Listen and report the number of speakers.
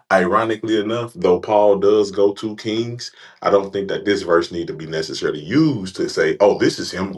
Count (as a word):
one